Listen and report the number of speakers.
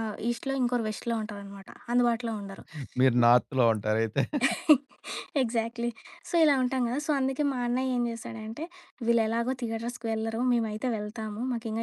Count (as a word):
two